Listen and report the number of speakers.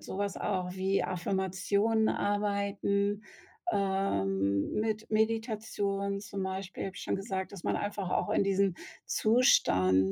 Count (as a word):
one